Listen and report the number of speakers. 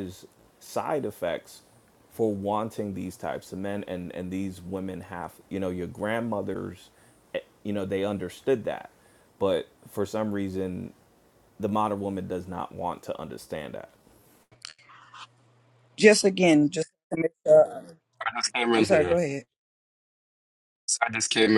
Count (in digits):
3